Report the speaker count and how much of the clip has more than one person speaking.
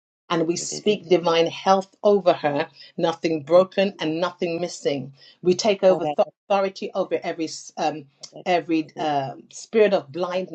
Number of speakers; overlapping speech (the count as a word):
one, no overlap